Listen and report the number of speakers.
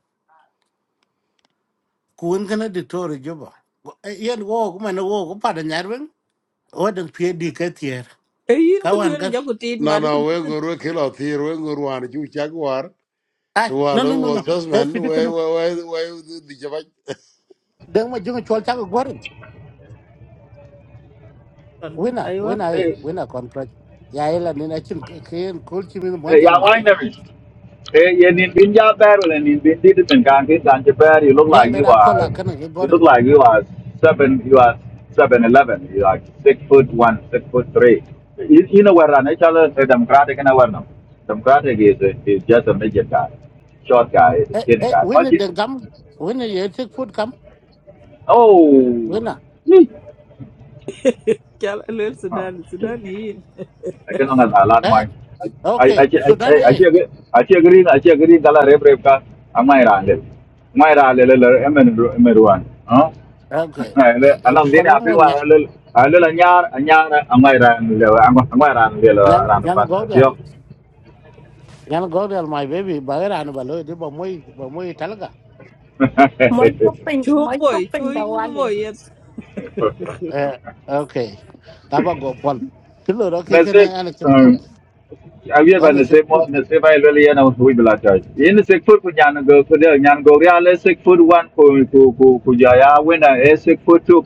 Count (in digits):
5